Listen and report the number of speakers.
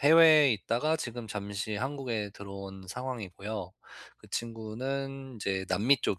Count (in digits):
1